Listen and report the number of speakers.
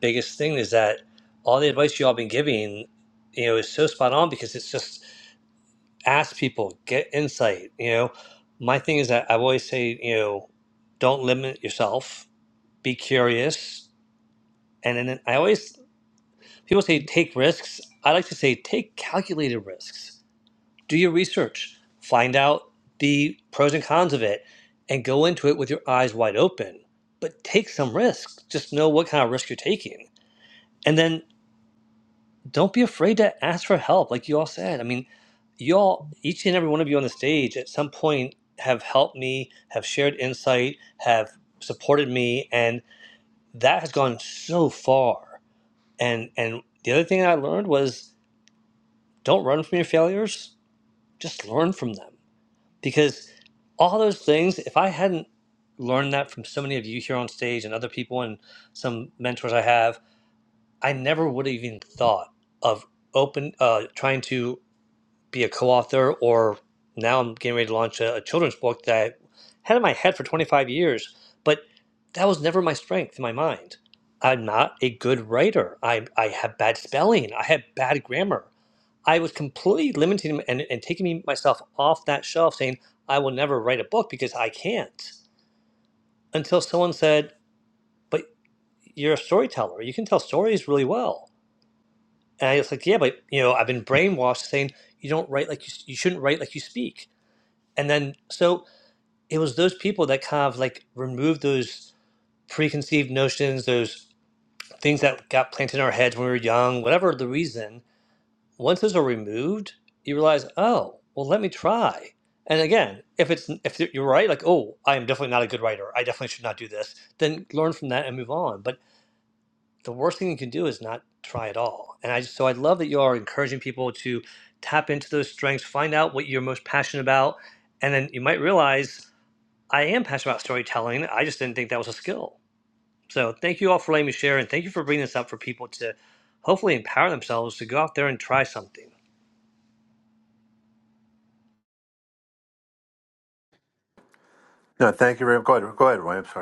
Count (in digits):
2